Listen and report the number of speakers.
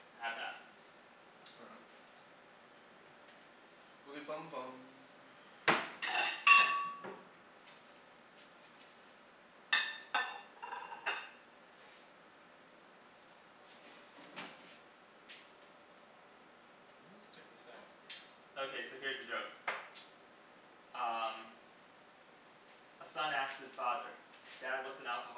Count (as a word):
two